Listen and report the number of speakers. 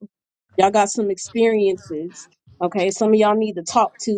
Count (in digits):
1